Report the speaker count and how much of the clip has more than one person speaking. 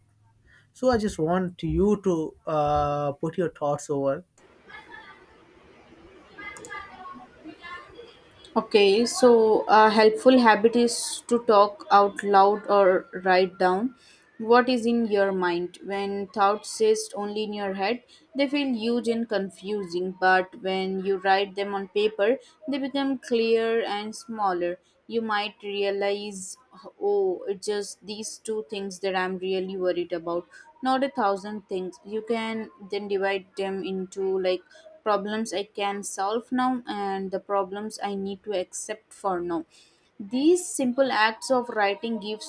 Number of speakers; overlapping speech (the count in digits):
2, no overlap